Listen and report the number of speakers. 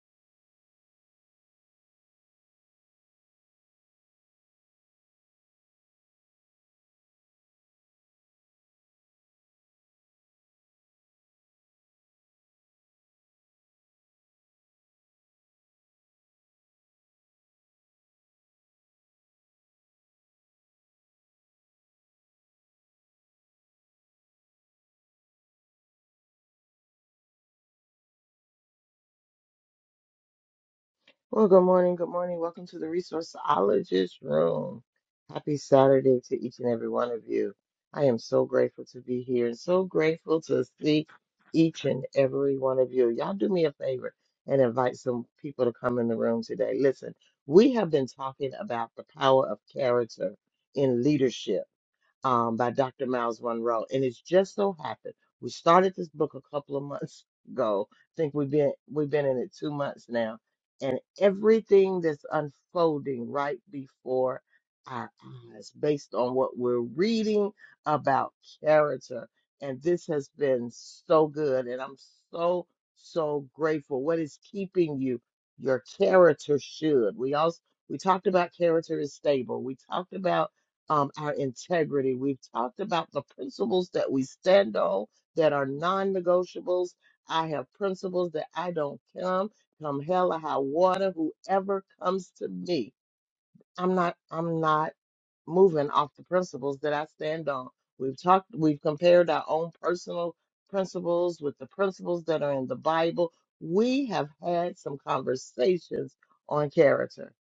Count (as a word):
one